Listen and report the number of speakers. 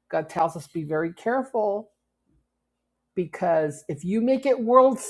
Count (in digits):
1